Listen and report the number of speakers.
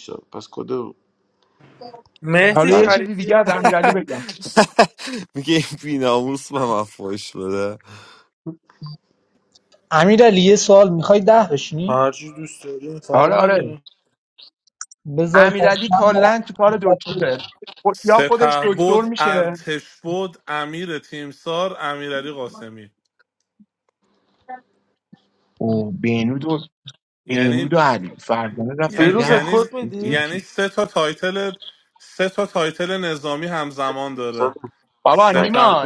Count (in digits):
6